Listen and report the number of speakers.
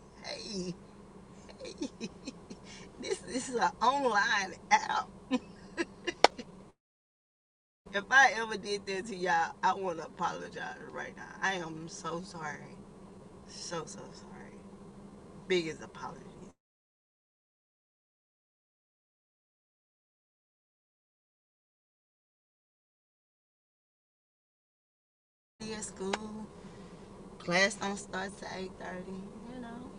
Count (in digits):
1